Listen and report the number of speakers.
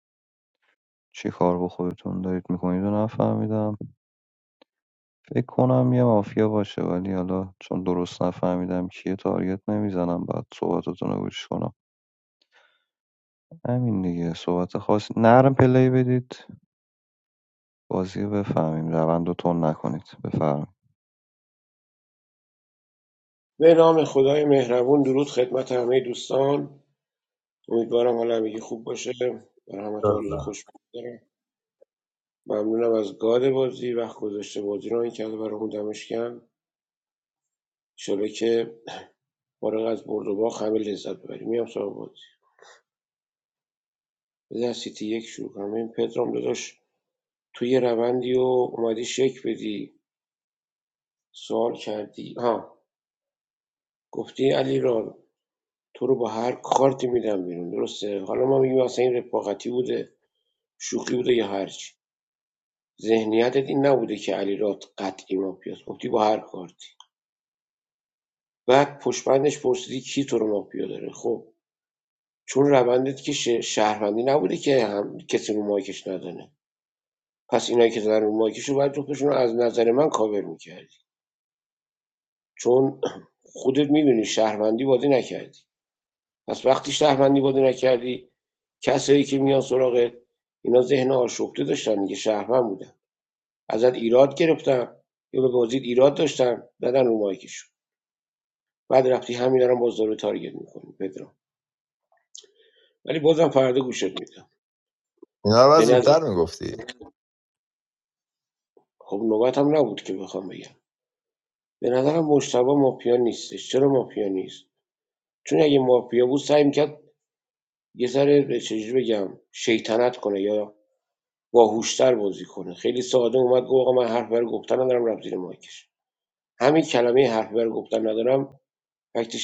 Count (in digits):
3